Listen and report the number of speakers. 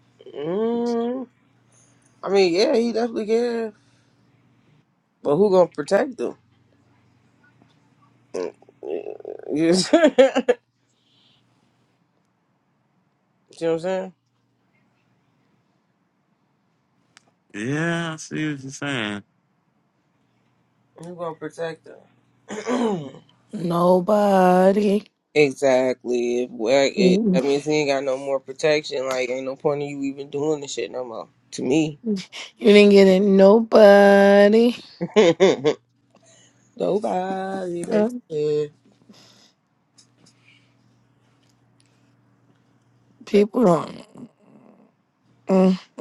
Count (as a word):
three